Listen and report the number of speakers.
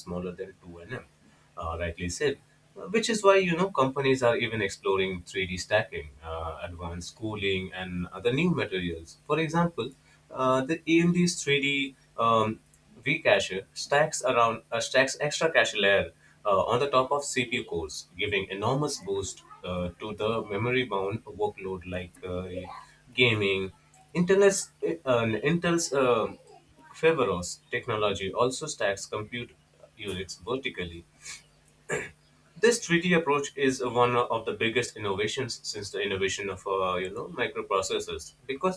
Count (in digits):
1